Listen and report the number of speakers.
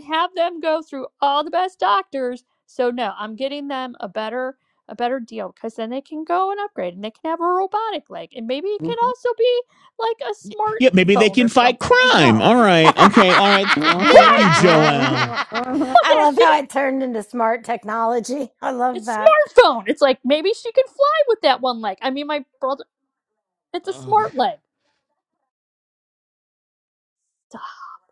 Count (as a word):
four